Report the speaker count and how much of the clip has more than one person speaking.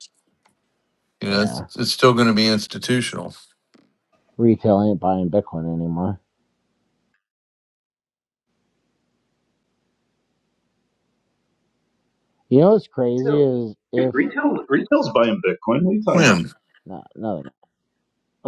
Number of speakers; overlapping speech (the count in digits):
3, about 4%